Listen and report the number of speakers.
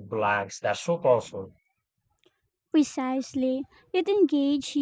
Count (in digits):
2